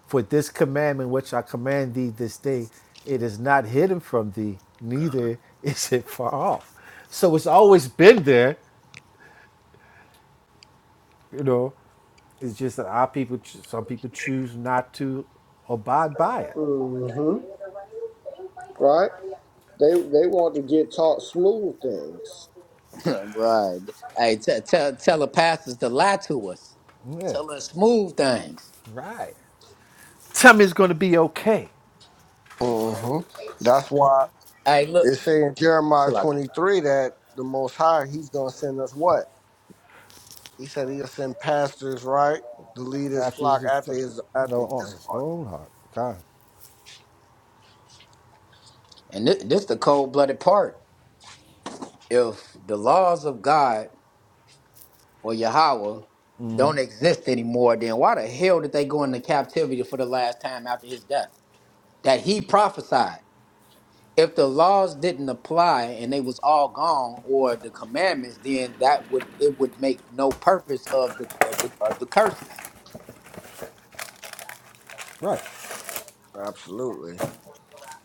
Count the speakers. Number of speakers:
3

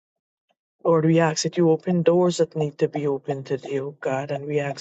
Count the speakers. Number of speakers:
1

